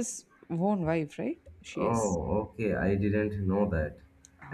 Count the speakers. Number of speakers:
two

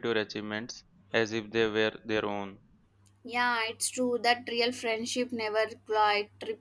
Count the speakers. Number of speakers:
two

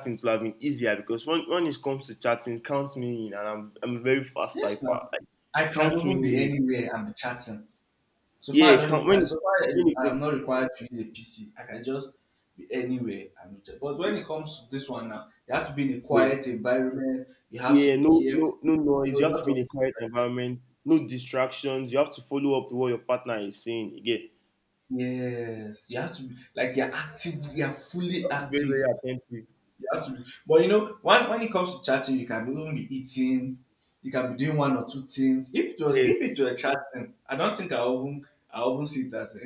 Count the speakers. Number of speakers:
two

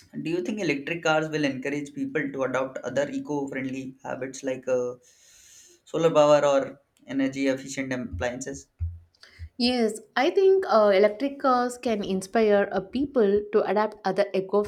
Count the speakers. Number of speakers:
two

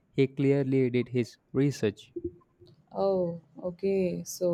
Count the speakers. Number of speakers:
two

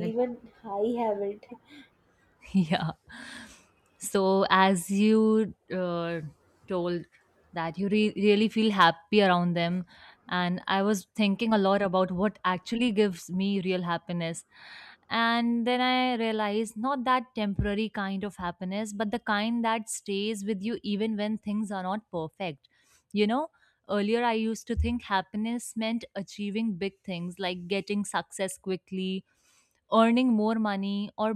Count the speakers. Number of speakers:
two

